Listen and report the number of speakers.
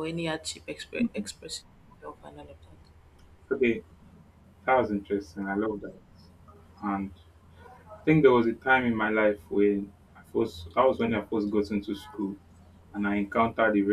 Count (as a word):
two